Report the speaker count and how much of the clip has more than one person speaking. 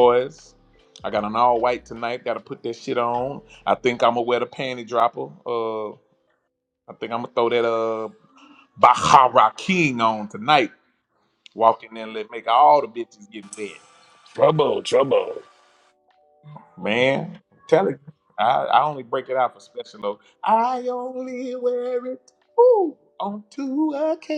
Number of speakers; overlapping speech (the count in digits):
2, no overlap